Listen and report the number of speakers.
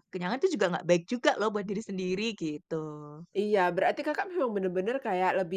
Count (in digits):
2